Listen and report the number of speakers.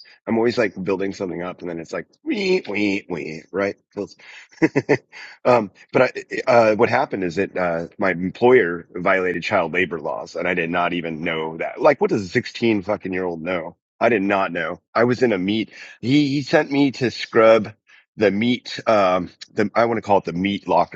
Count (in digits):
1